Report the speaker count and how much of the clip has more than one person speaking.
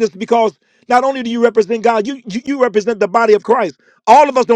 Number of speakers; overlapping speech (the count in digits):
1, no overlap